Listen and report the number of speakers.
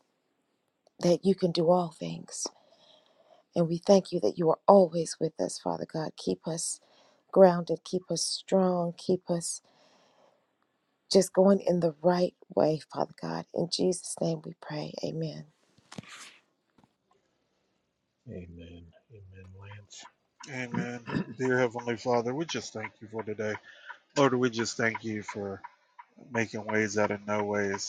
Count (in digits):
3